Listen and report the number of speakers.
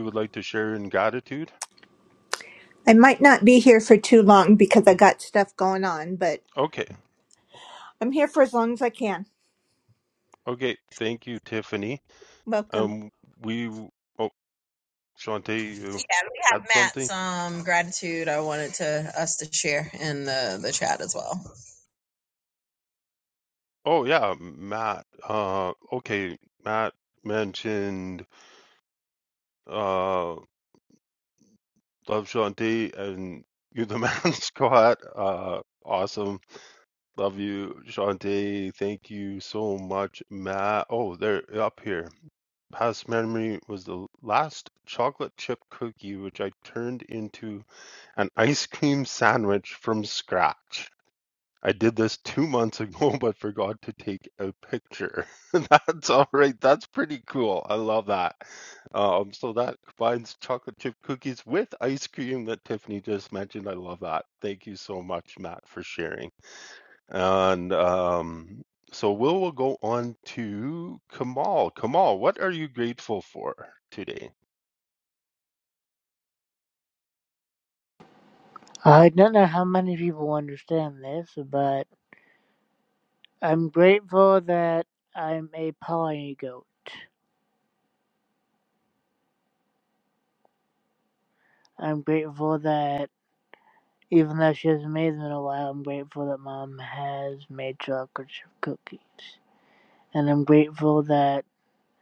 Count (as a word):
four